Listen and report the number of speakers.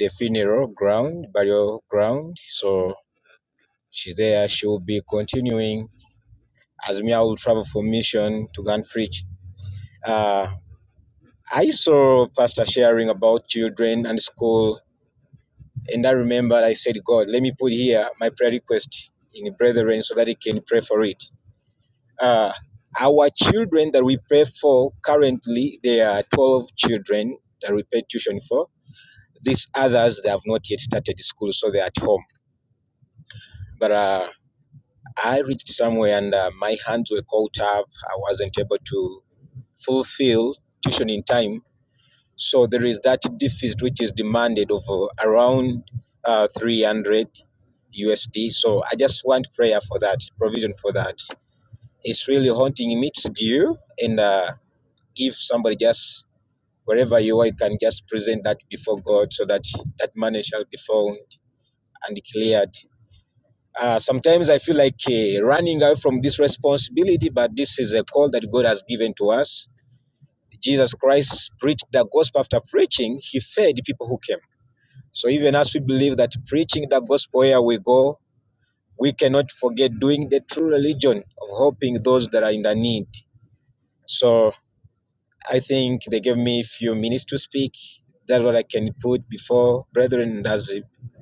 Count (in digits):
1